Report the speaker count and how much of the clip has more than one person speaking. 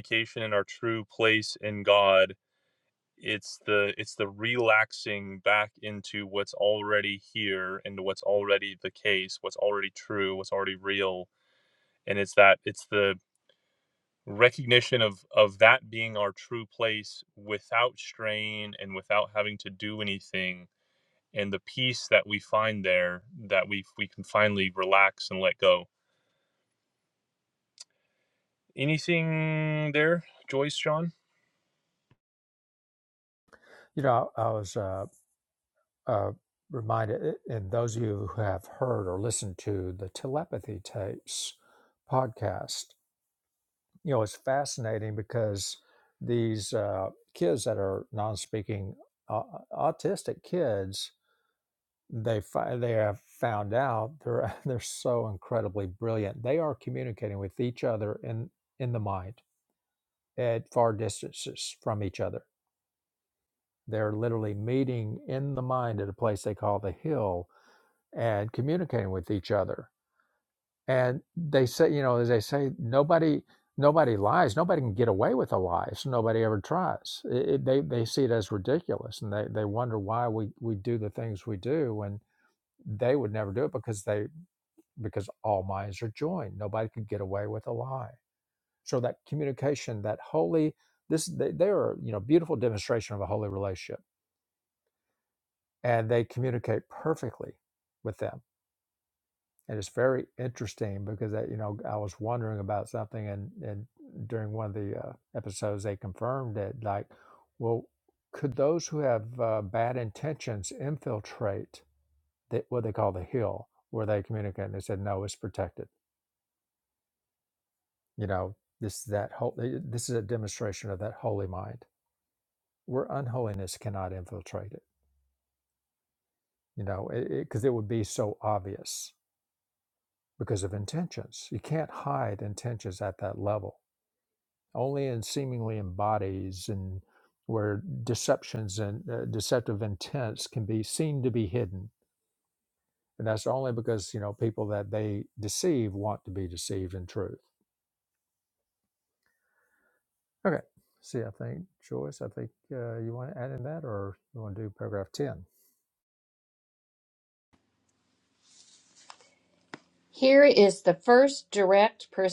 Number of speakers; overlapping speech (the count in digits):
3, no overlap